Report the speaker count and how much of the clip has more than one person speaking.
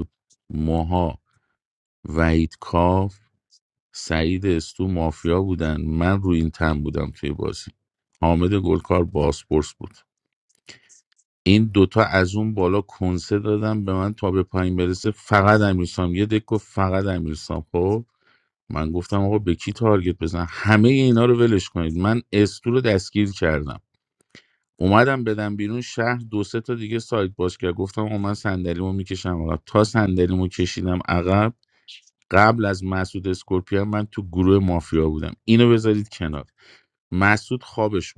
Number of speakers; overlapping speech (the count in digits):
1, no overlap